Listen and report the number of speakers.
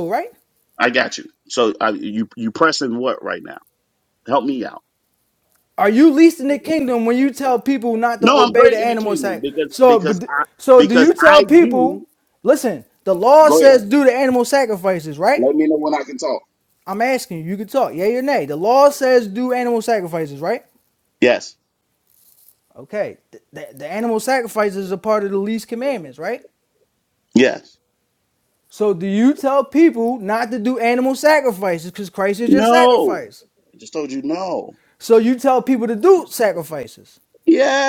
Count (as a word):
two